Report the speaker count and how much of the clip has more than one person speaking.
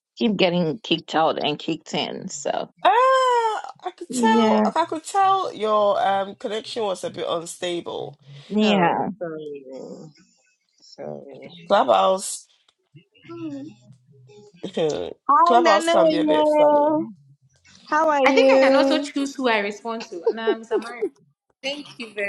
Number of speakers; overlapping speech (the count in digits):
4, about 15%